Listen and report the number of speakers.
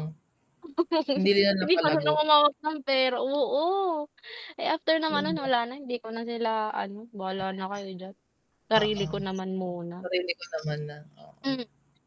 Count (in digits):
2